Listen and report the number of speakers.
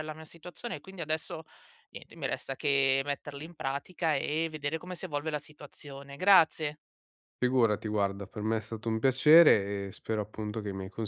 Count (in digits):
2